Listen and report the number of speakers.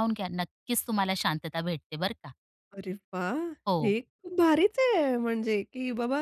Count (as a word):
two